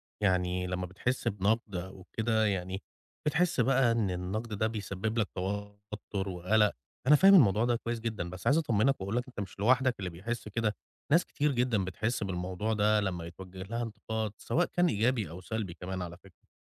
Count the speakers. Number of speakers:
1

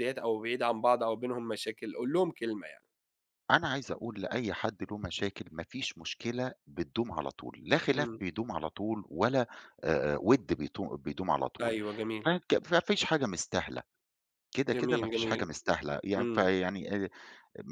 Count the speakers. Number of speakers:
2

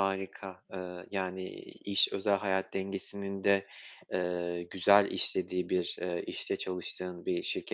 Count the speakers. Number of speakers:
1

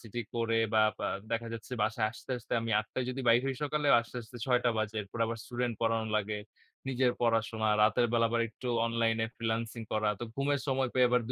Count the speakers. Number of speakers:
1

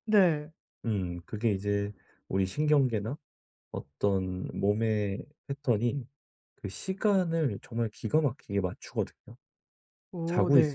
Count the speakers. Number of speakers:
2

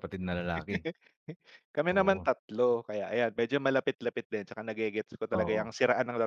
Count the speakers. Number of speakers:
2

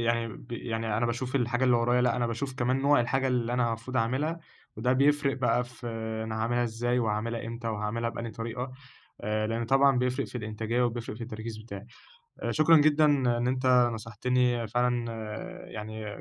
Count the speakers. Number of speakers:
1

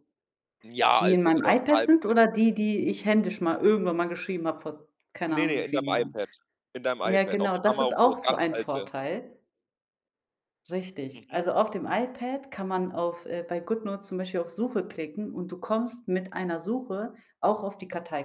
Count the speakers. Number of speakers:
2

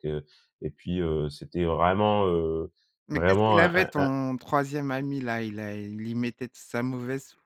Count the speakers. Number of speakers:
2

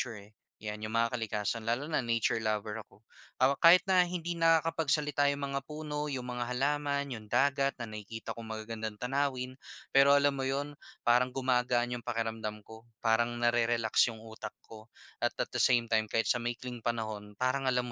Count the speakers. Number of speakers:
1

